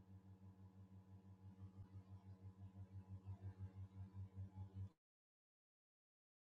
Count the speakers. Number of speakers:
zero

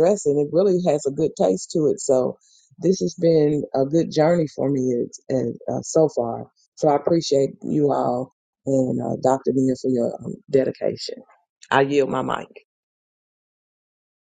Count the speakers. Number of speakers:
one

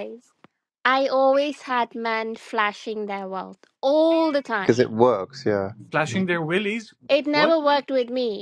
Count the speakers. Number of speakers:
three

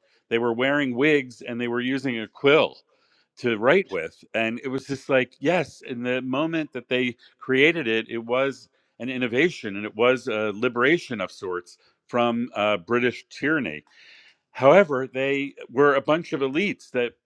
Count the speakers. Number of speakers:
one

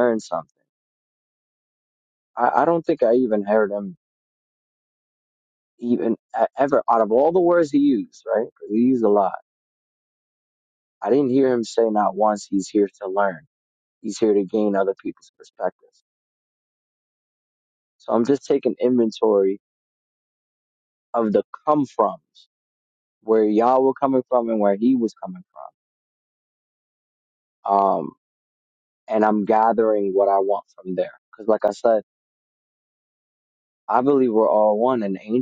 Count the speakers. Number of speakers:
one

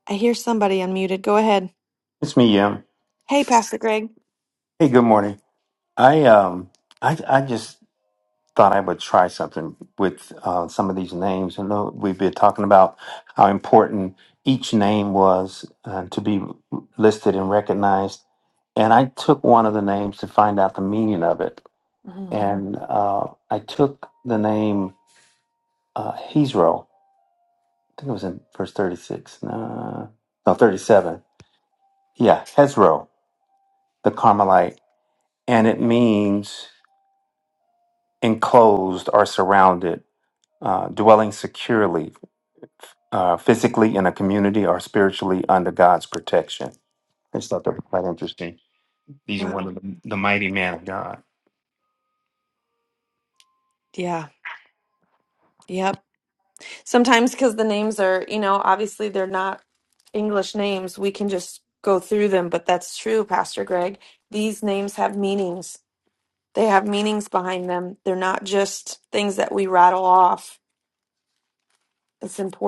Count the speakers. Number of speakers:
two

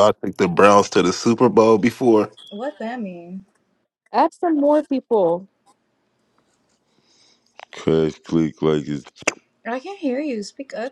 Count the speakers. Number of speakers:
four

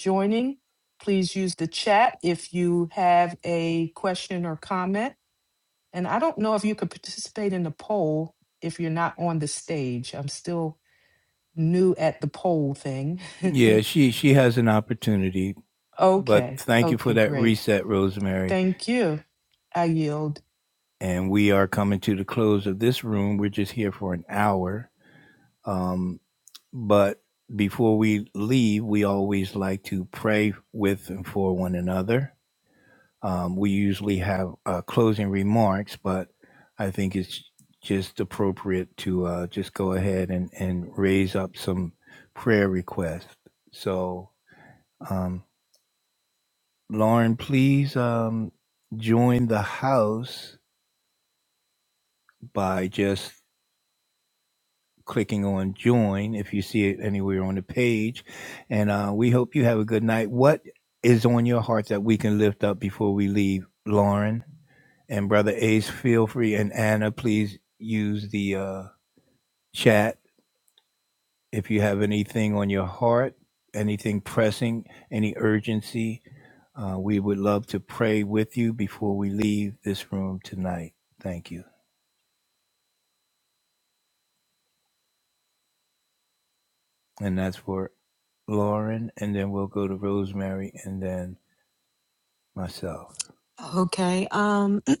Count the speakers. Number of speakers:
three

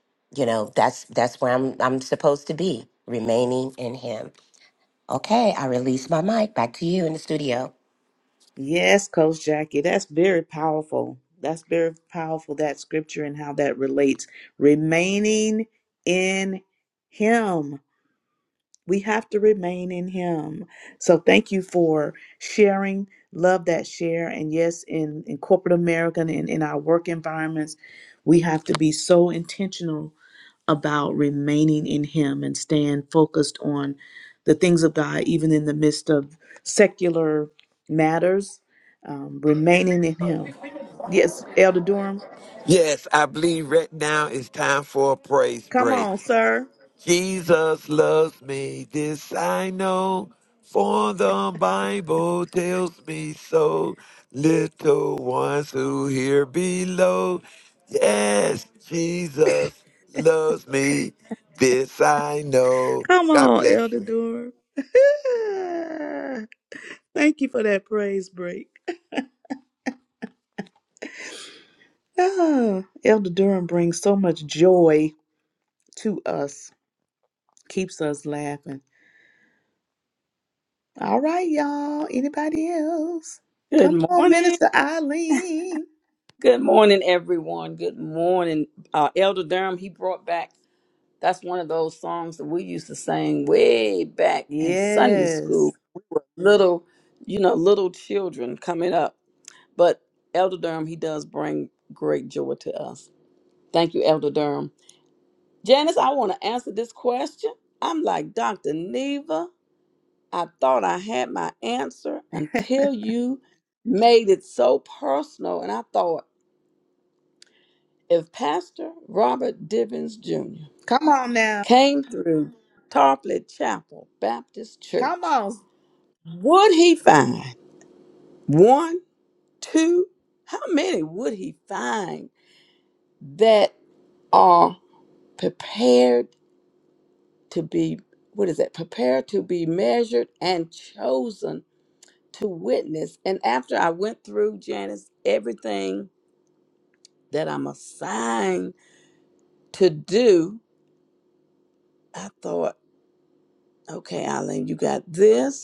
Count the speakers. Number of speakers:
four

